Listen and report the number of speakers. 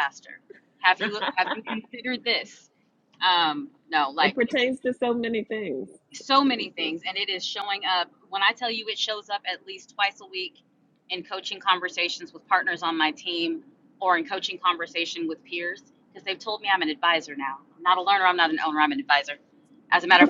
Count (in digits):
2